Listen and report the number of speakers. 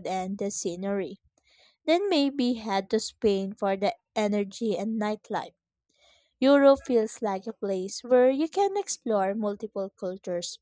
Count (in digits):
1